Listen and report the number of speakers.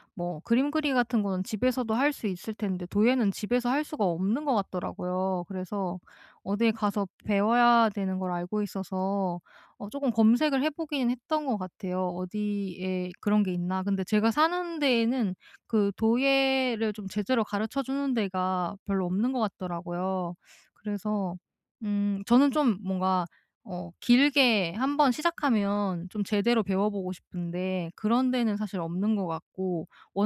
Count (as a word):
one